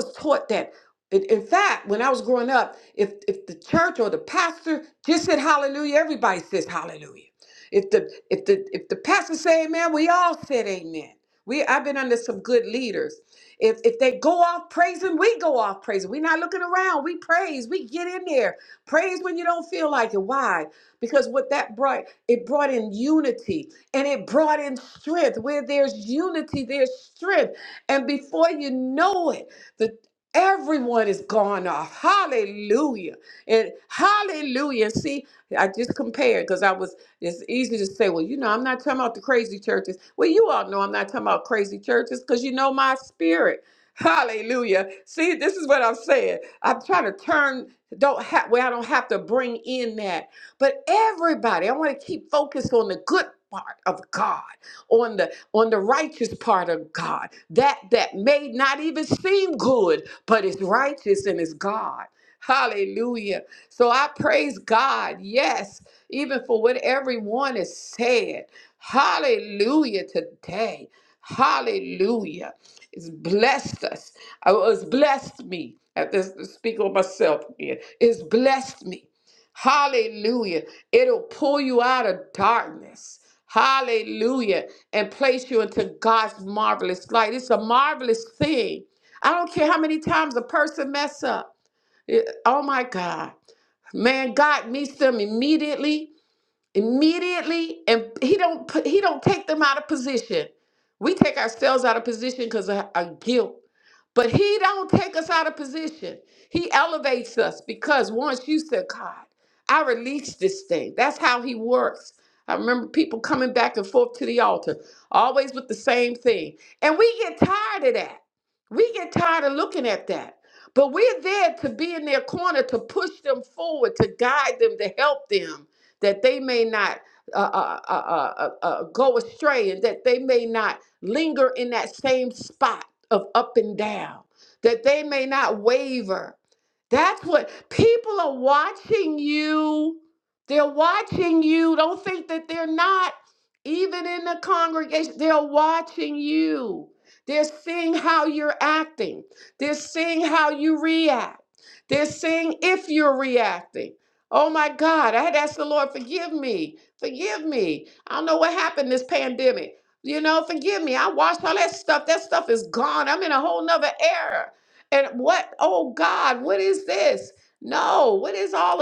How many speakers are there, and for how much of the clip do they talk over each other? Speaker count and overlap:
1, no overlap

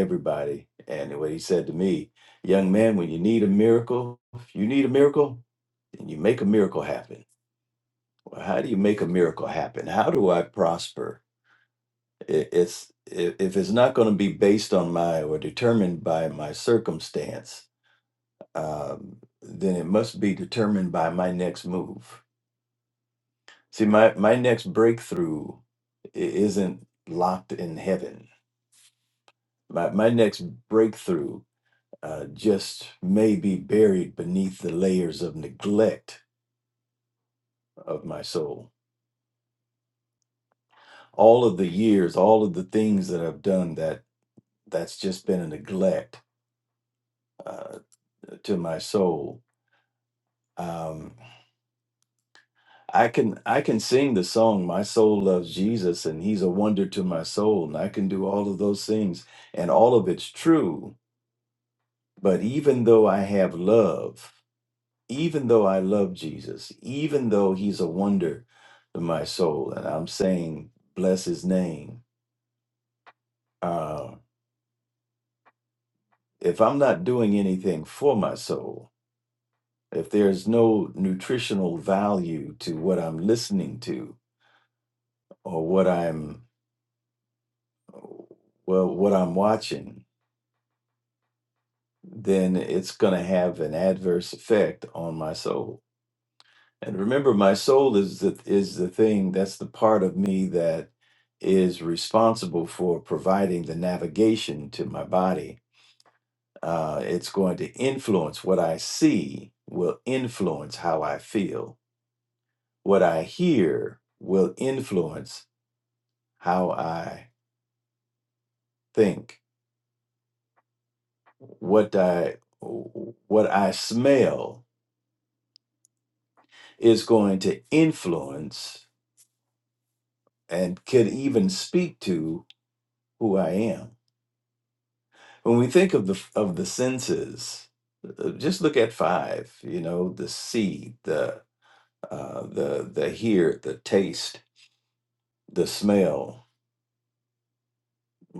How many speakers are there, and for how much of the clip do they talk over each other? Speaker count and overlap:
1, no overlap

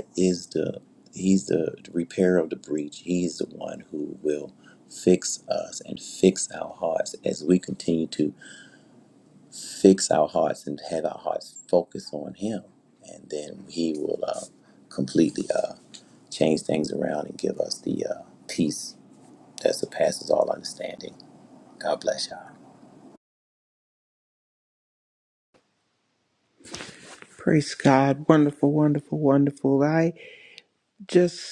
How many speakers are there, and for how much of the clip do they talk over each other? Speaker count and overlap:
2, no overlap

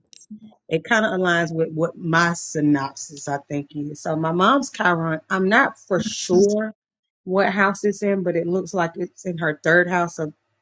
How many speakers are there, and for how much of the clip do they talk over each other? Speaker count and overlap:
1, no overlap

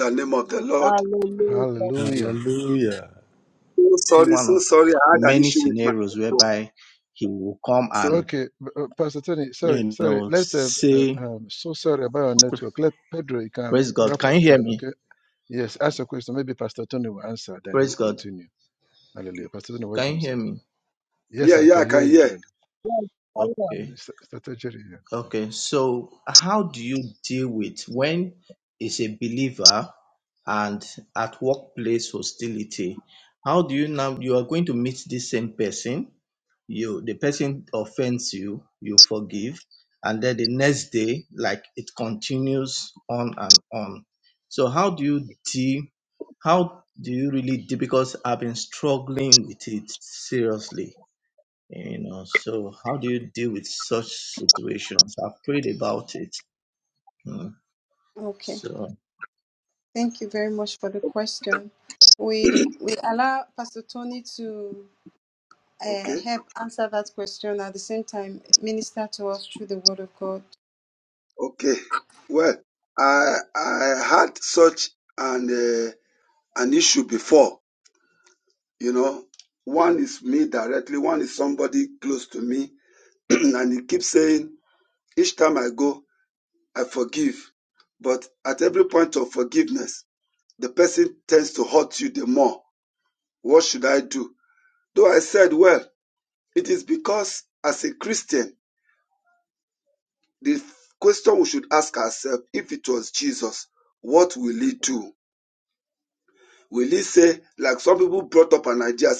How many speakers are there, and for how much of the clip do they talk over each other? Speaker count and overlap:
6, about 8%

